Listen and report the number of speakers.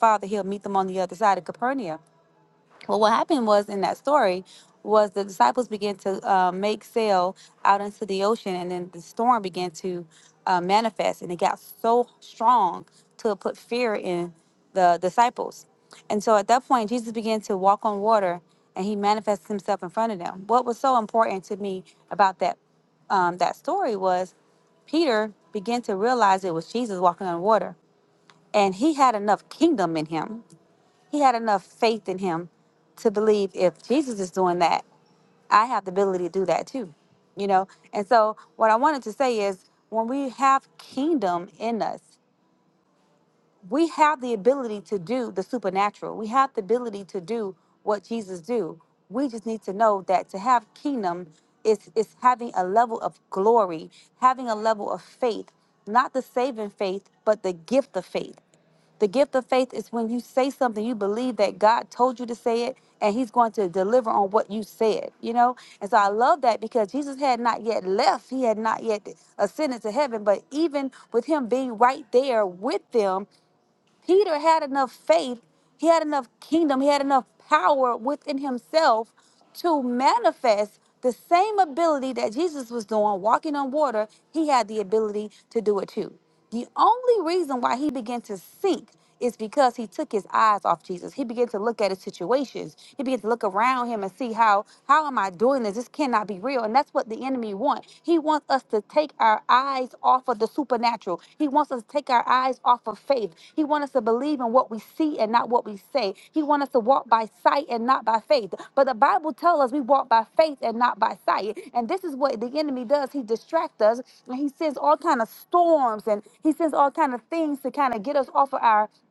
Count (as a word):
one